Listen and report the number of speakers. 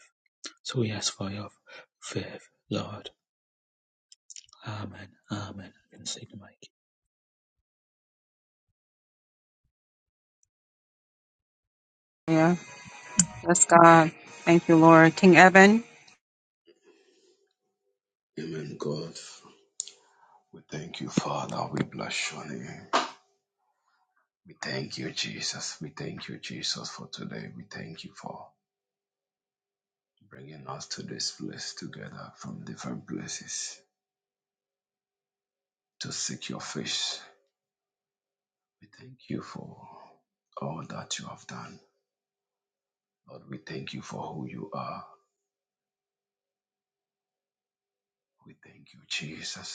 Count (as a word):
three